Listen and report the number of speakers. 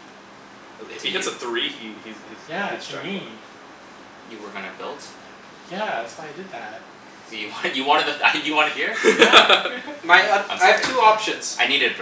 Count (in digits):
4